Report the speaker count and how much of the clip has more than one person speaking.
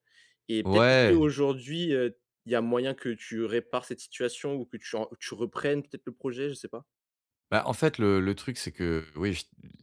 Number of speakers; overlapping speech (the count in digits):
2, about 6%